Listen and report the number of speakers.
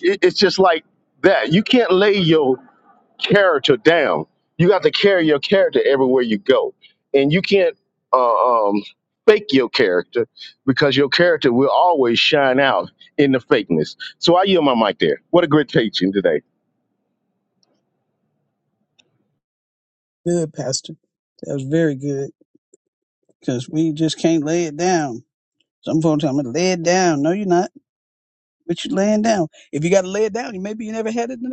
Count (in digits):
2